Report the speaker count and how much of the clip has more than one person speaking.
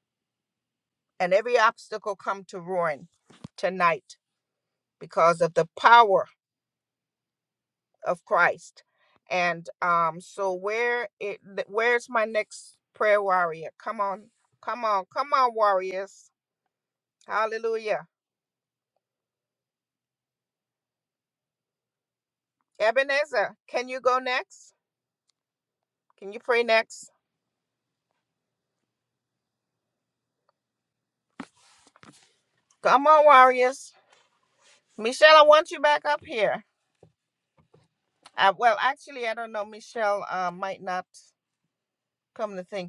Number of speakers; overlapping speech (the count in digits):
1, no overlap